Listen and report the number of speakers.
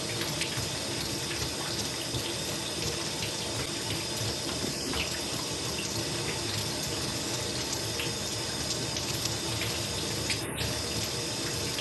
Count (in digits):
0